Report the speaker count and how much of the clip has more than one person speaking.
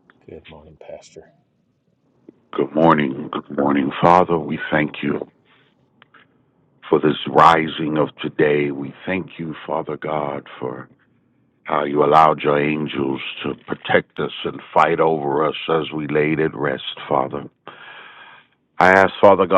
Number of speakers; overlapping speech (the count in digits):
2, no overlap